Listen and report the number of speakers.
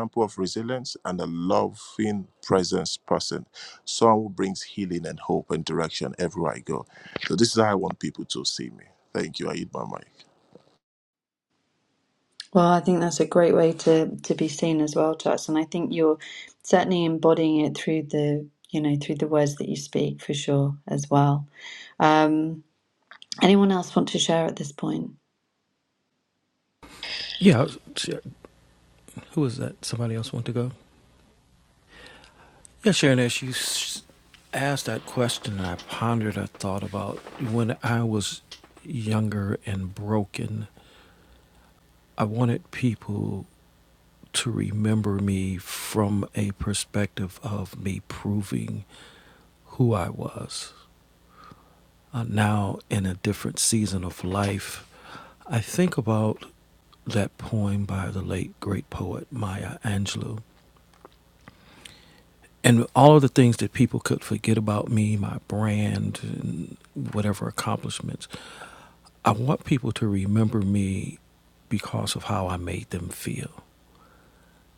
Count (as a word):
three